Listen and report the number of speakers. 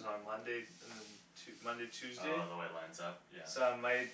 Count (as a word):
two